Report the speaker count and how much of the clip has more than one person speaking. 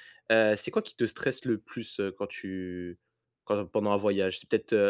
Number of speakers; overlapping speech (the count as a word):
one, no overlap